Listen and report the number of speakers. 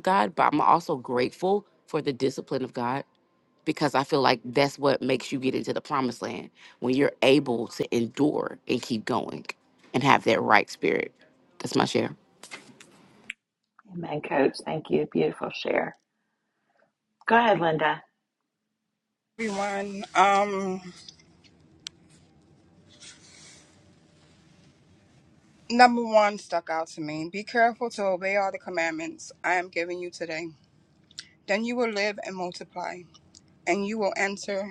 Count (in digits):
3